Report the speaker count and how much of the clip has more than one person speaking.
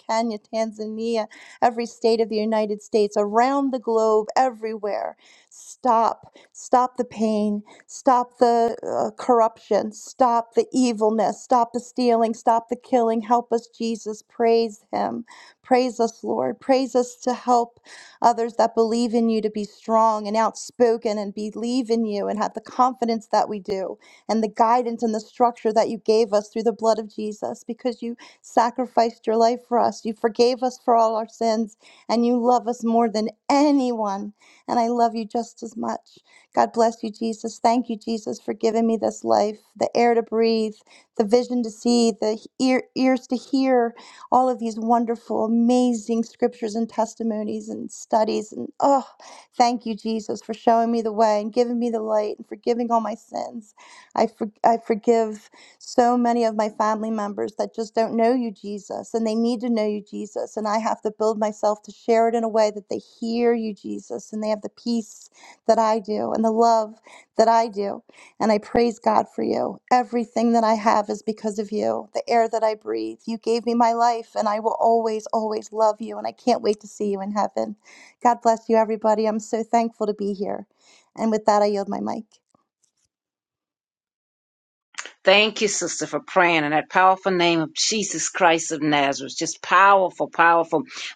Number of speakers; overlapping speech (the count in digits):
2, no overlap